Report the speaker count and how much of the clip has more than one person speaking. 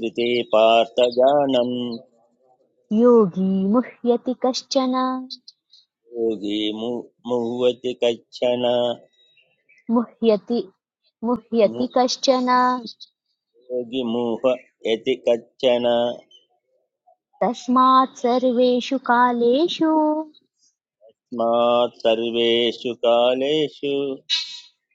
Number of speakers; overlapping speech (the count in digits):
2, about 1%